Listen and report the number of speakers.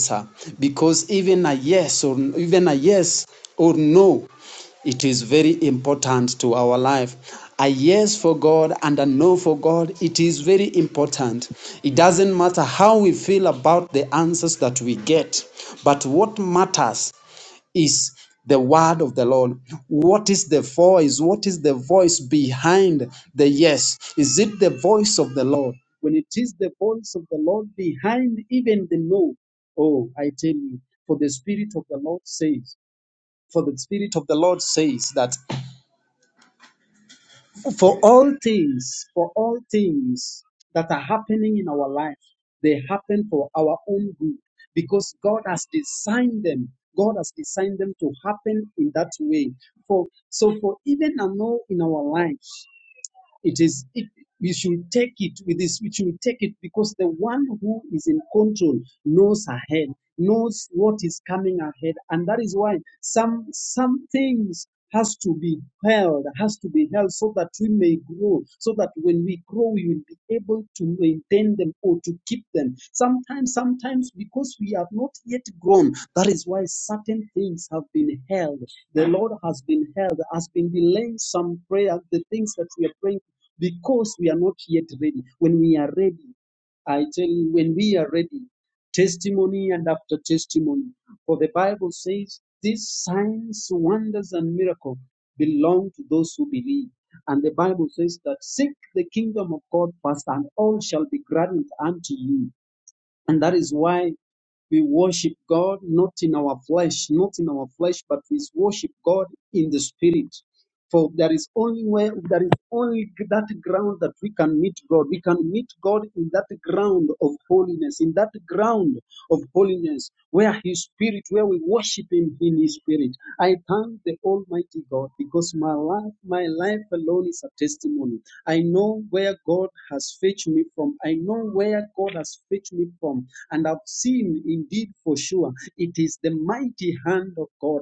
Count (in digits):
1